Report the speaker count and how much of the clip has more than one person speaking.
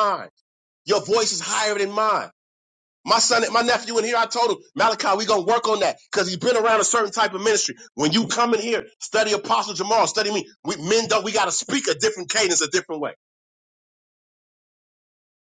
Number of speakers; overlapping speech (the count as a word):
one, no overlap